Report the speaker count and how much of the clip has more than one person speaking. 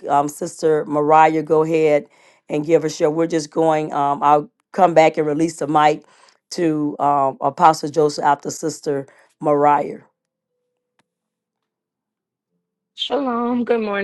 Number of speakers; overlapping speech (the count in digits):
2, no overlap